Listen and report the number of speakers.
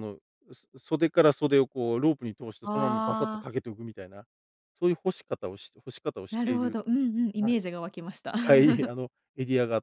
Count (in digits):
2